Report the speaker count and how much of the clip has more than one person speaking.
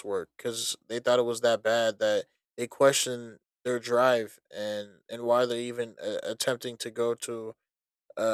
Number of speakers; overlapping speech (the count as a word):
one, no overlap